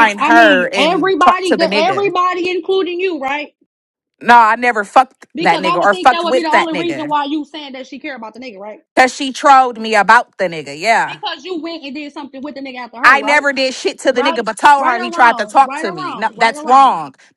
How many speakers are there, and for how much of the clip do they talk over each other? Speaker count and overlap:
two, about 40%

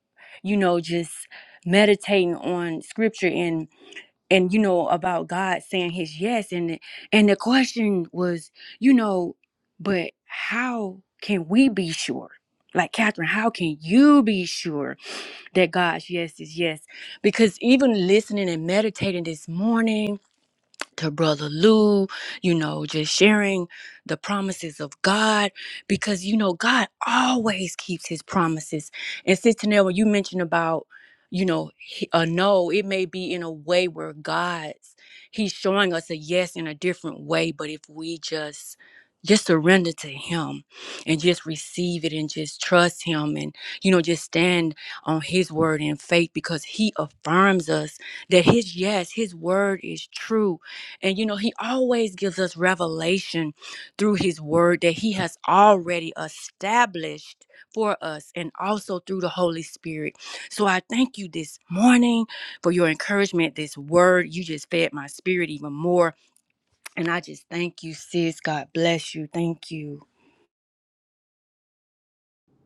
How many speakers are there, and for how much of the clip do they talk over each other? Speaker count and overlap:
one, no overlap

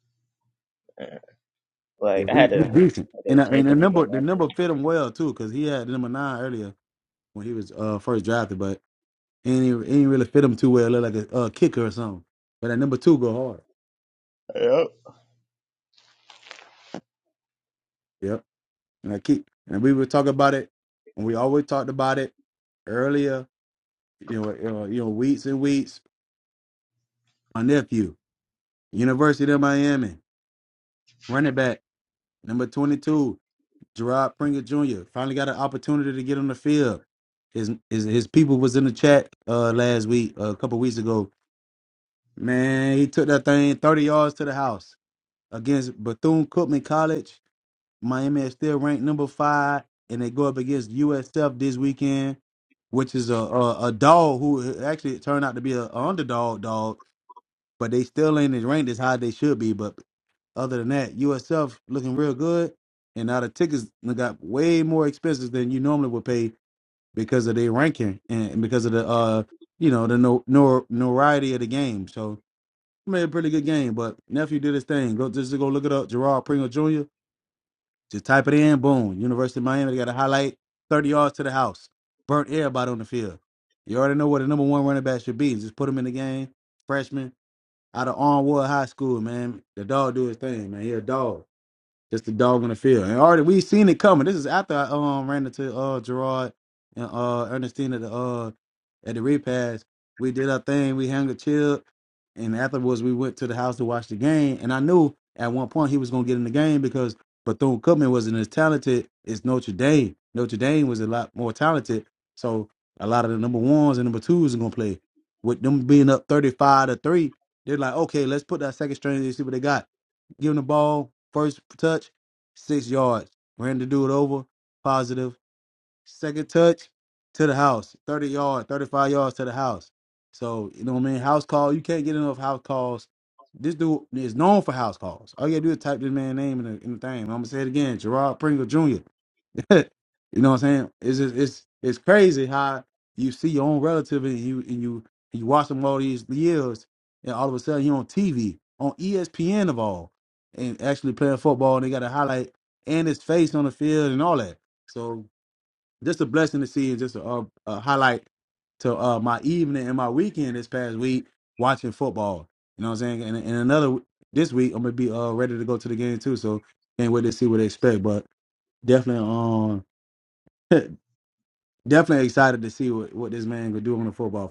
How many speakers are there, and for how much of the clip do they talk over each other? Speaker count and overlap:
two, about 1%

